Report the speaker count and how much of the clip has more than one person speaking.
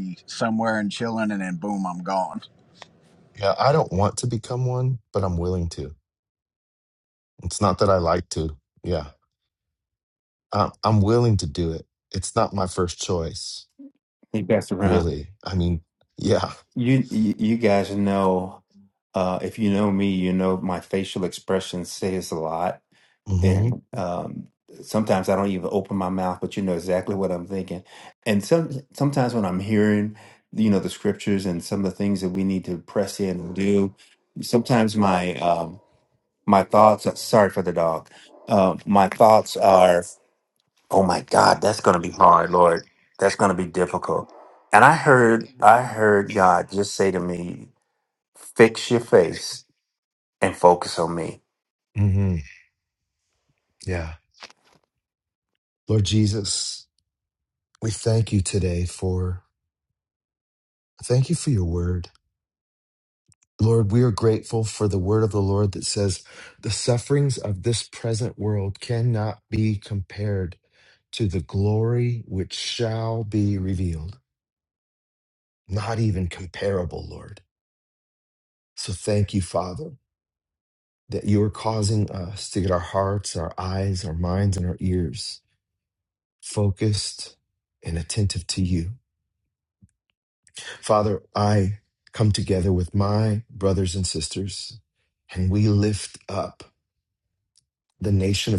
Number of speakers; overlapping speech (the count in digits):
3, about 1%